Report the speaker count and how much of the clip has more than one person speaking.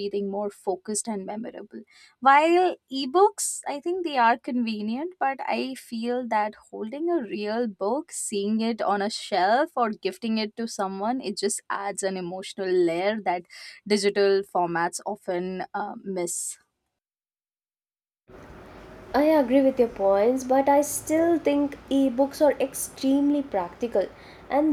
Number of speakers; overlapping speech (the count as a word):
two, no overlap